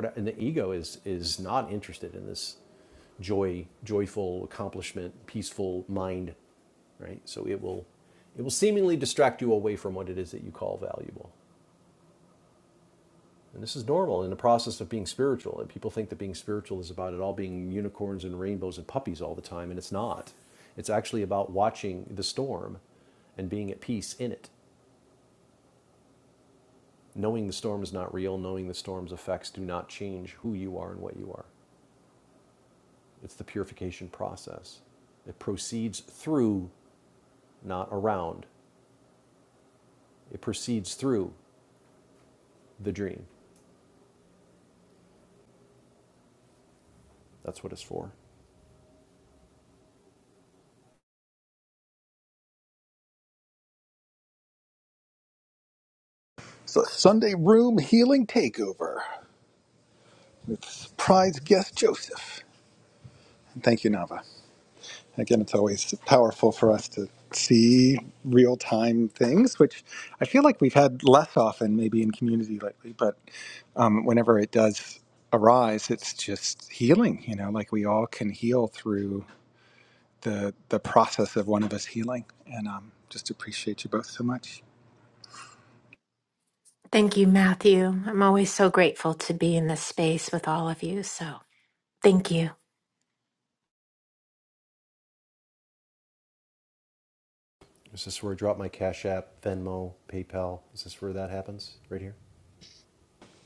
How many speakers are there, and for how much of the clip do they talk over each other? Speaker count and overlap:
3, no overlap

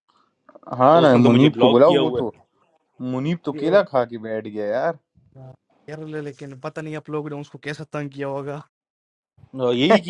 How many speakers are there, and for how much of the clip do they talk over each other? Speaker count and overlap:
3, about 16%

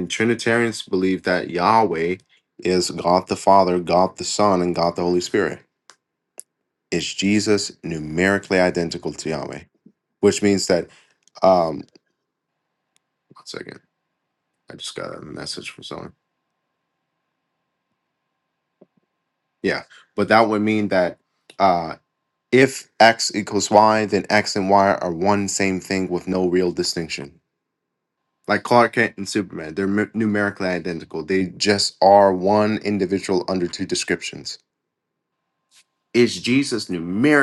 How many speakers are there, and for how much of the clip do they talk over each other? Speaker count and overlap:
1, no overlap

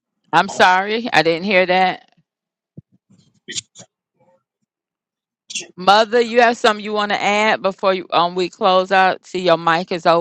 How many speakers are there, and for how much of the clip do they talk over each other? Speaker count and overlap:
1, no overlap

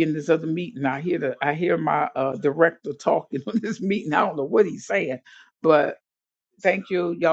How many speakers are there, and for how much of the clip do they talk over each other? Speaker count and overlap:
1, no overlap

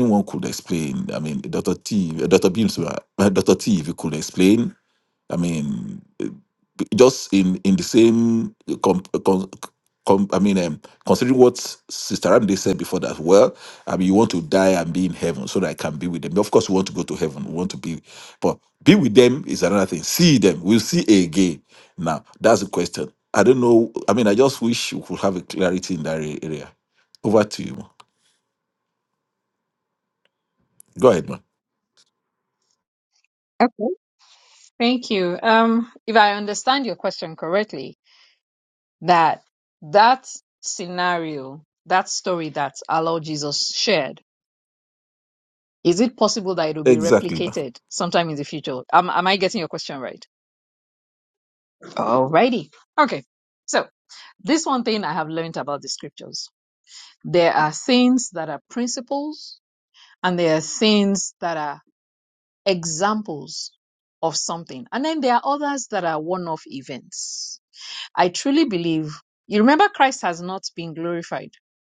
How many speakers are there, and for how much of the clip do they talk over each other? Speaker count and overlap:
2, about 1%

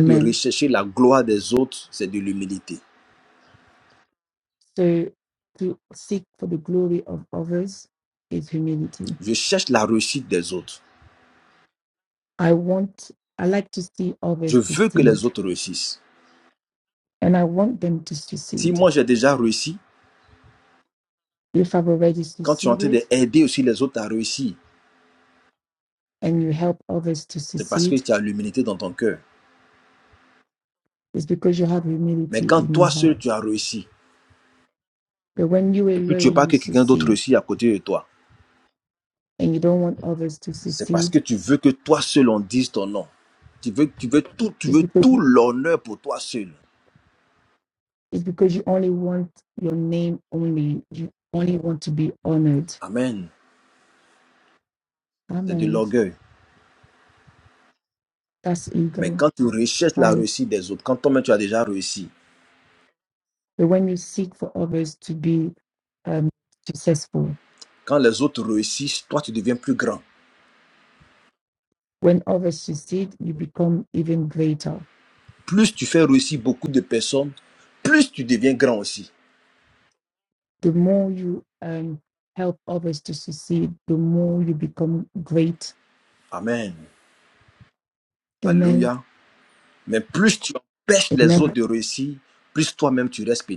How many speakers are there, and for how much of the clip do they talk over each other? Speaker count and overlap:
2, about 8%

